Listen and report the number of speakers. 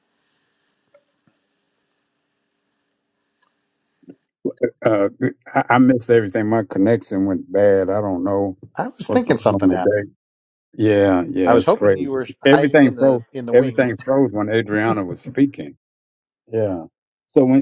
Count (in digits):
2